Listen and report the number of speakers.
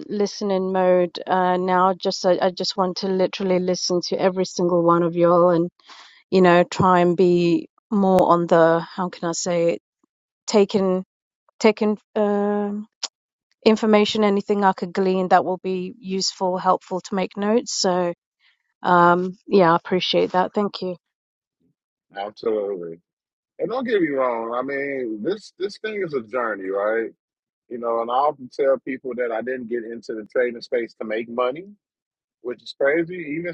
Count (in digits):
2